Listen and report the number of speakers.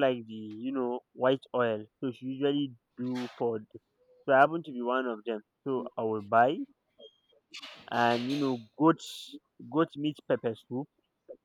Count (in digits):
1